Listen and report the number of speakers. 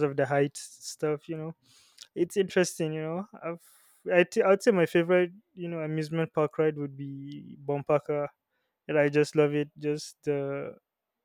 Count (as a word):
one